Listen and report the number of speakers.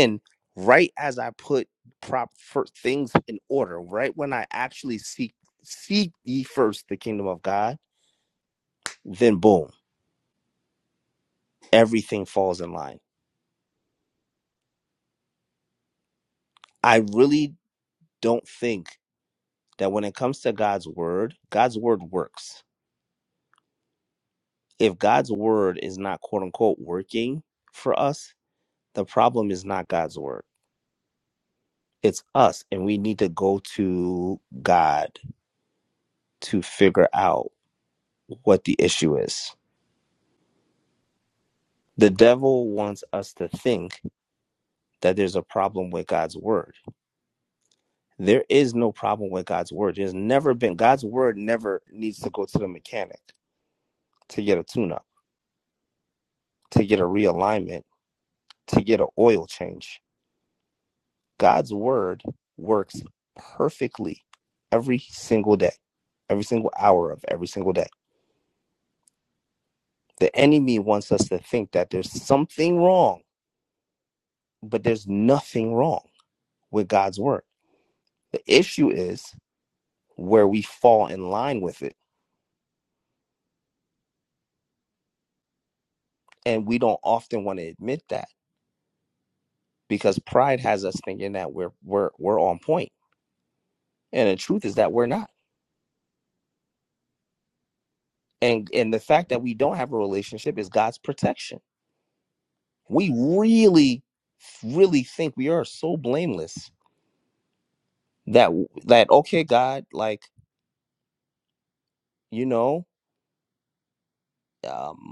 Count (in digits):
1